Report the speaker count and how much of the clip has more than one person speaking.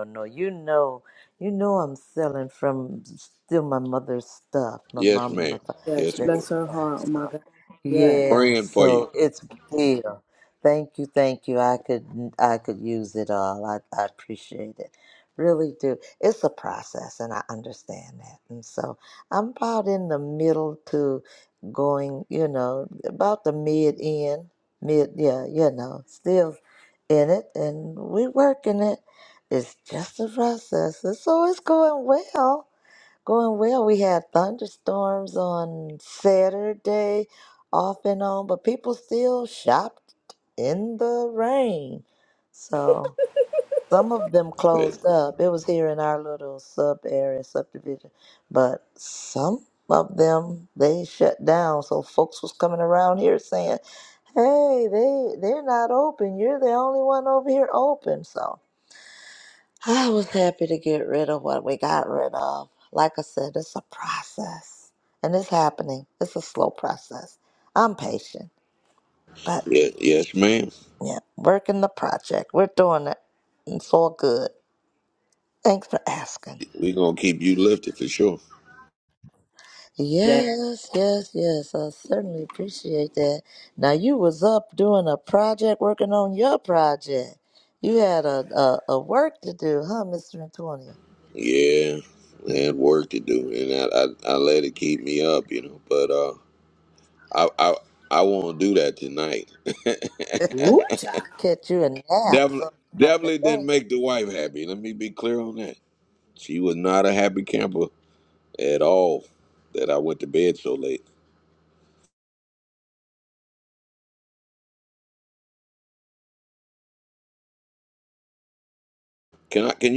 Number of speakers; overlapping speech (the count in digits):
3, about 3%